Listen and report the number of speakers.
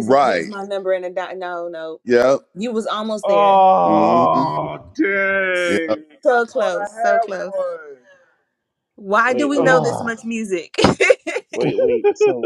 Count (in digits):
4